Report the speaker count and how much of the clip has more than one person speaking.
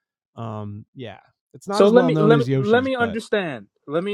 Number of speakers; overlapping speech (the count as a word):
two, about 34%